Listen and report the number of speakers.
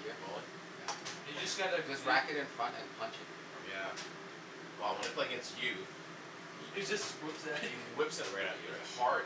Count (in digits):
3